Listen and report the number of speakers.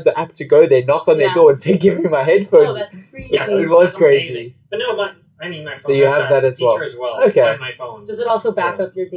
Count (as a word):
three